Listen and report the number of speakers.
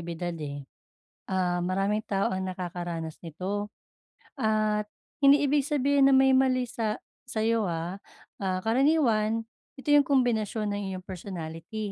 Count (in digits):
1